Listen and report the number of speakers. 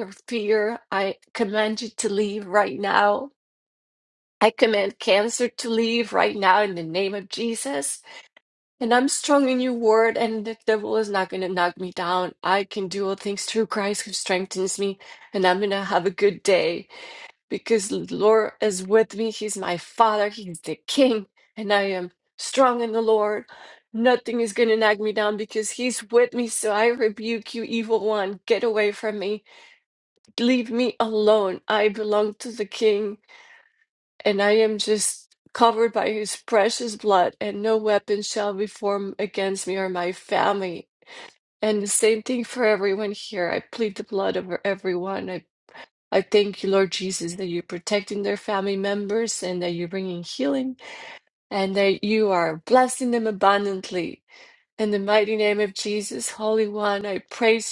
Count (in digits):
1